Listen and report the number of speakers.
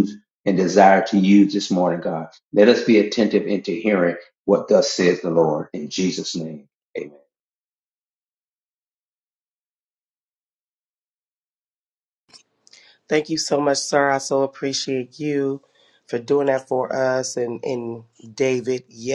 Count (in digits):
2